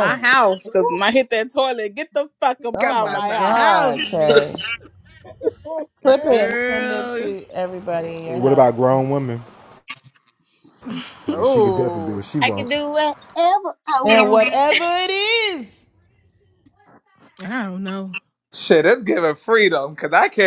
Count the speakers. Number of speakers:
6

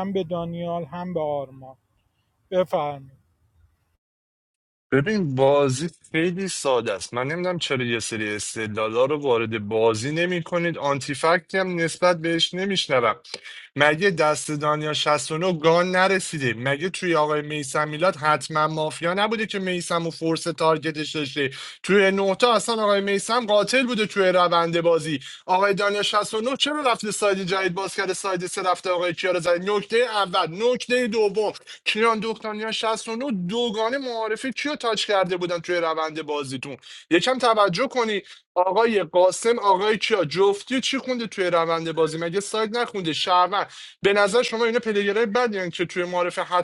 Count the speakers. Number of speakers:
2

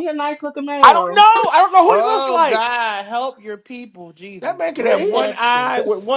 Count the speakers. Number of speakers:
3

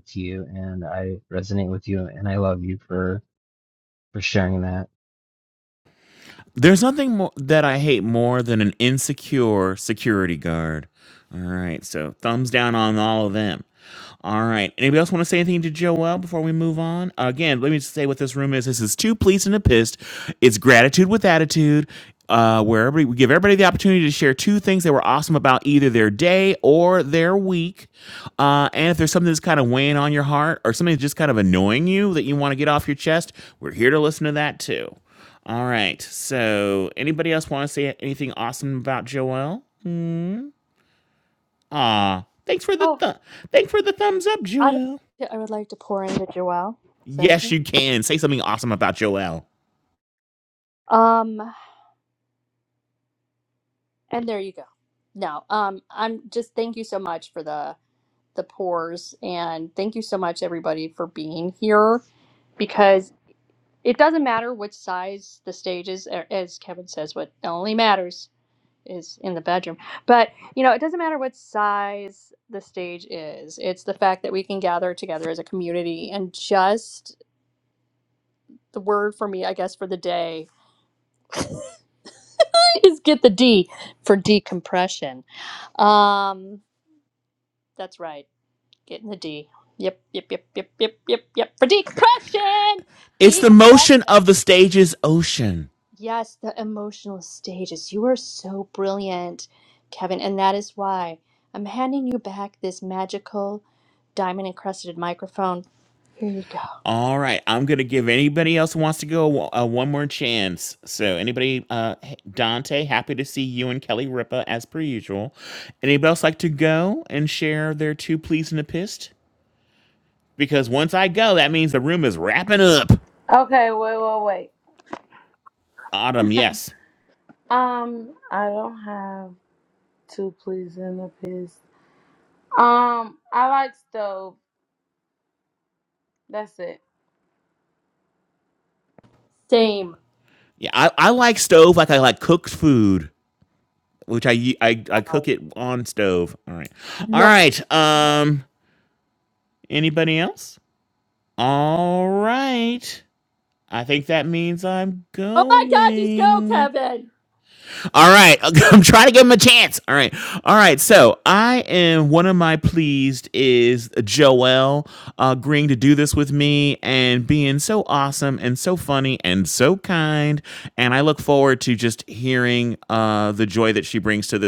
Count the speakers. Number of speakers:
4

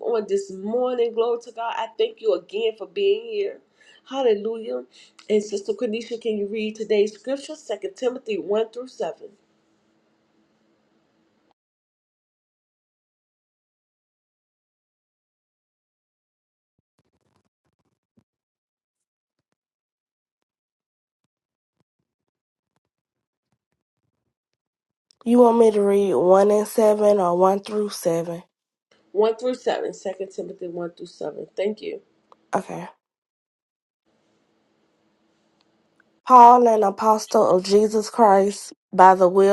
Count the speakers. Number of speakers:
2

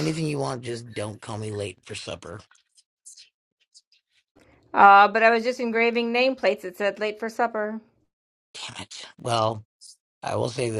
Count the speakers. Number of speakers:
2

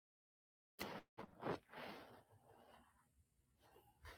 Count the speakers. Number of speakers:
0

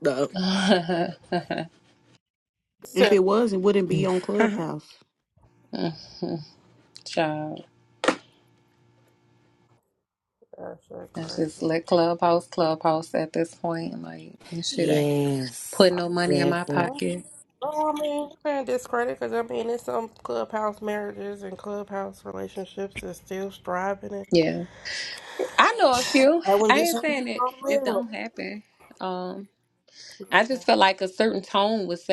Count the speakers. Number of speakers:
4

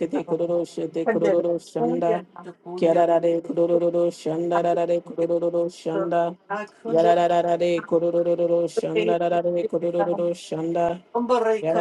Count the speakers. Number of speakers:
2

